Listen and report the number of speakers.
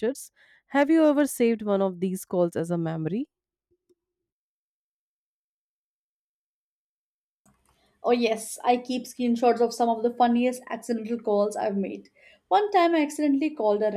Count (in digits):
2